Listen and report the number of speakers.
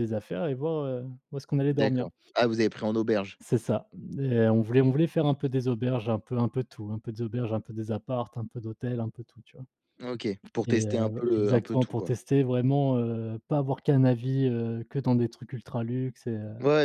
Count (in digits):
2